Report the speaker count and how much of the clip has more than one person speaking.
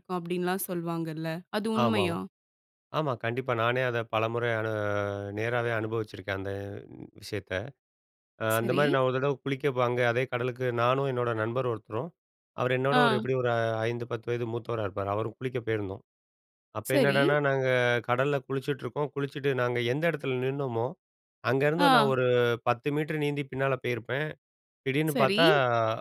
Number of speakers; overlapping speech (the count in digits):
2, about 8%